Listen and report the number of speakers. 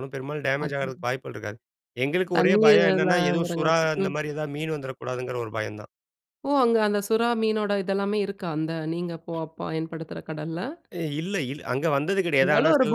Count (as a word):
two